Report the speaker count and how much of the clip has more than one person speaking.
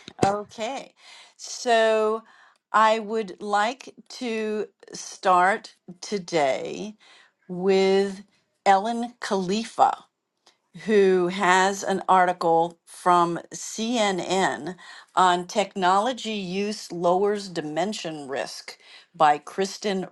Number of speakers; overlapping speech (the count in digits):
1, no overlap